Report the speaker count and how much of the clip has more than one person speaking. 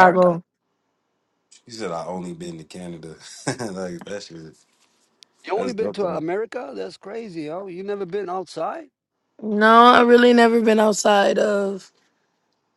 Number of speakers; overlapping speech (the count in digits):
3, about 8%